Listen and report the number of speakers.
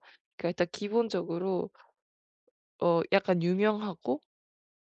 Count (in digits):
1